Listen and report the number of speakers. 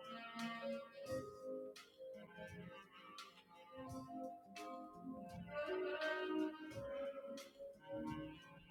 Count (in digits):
0